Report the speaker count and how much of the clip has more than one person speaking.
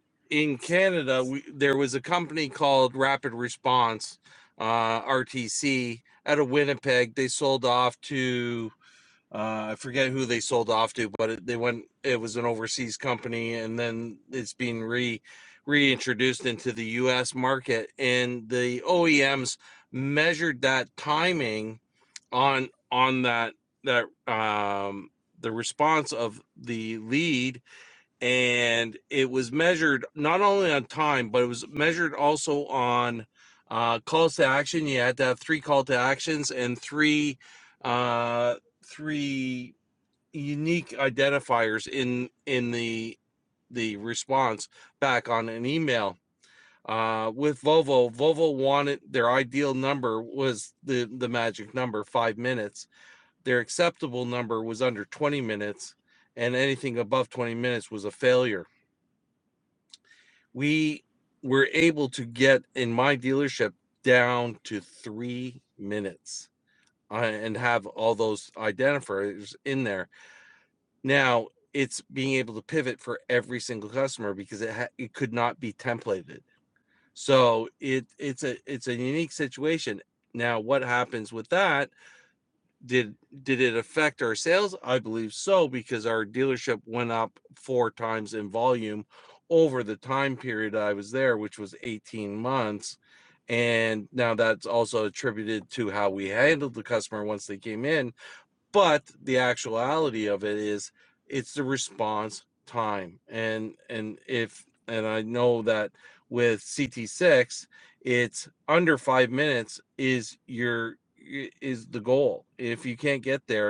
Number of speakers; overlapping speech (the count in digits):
1, no overlap